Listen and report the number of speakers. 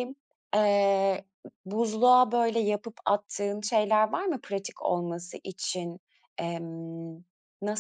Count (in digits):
1